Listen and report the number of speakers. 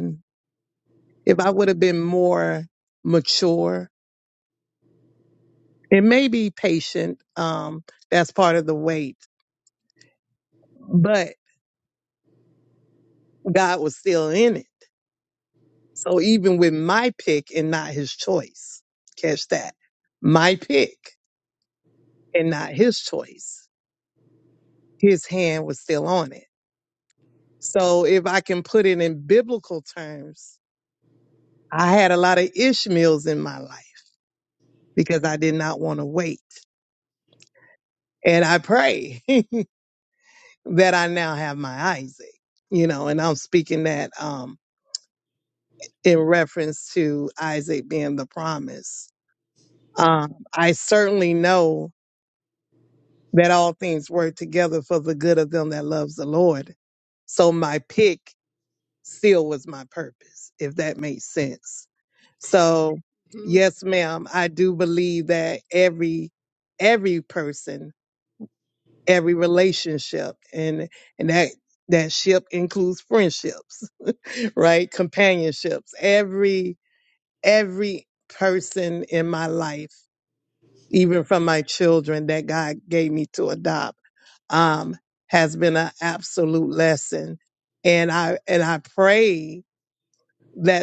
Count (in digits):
1